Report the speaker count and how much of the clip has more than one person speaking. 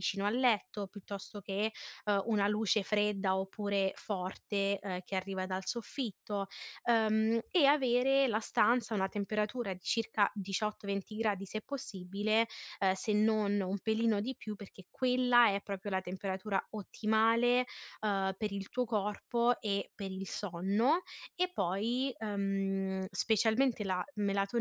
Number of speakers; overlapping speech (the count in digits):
1, no overlap